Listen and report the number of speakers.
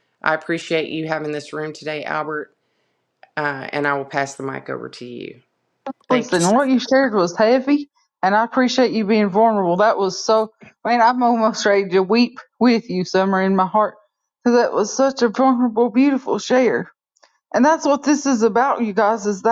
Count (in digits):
2